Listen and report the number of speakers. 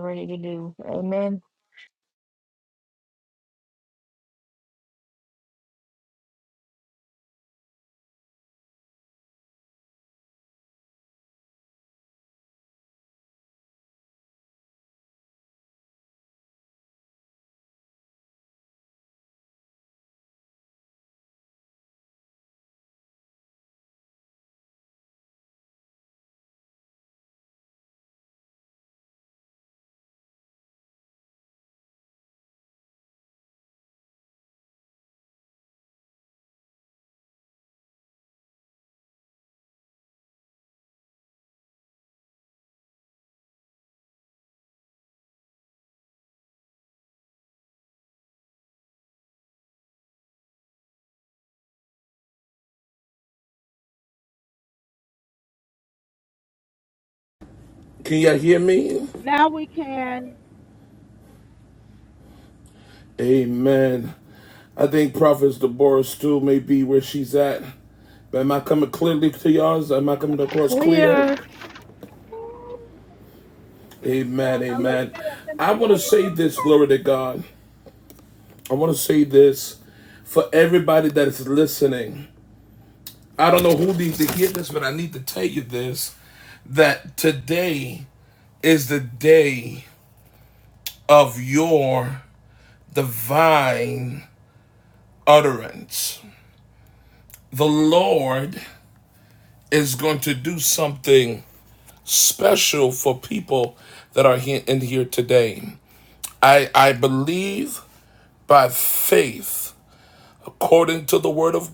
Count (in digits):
3